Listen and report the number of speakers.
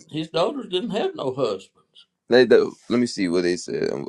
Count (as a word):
two